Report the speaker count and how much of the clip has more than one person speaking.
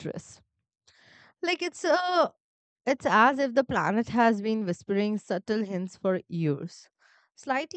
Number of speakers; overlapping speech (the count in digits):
1, no overlap